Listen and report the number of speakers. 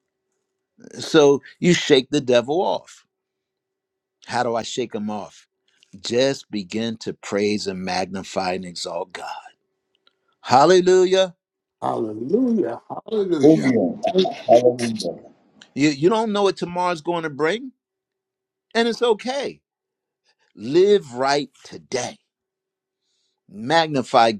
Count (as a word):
three